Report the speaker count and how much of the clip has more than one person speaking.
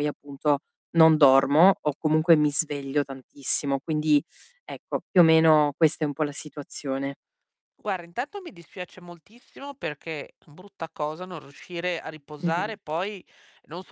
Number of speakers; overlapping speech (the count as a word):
two, about 2%